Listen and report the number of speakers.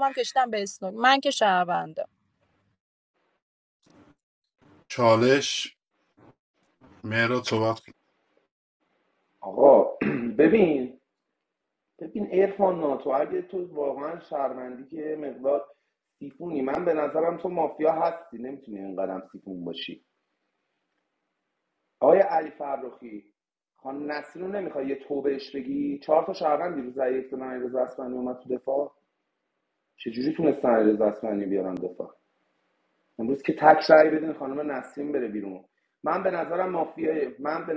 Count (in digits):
3